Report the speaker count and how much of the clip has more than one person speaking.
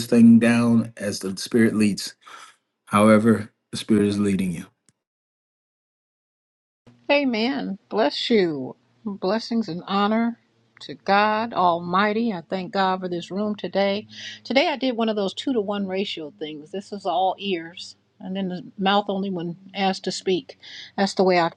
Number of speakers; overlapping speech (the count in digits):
2, no overlap